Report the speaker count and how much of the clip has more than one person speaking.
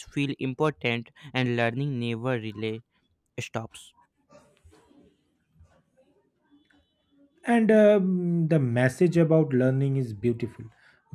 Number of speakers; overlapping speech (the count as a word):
two, no overlap